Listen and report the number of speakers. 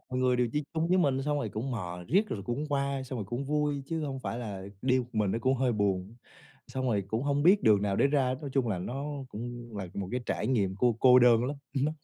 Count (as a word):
one